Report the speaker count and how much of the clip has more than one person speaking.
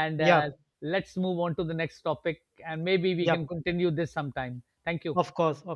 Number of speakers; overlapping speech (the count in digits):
2, about 9%